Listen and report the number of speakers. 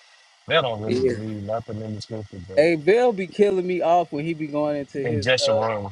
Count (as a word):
two